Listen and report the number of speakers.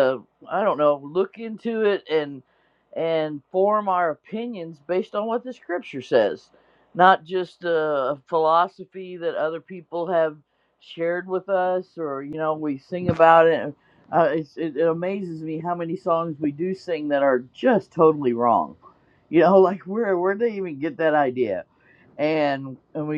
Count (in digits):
1